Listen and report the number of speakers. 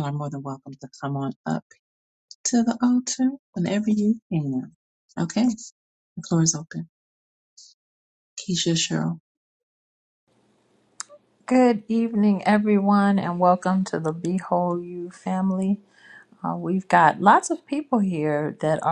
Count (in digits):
2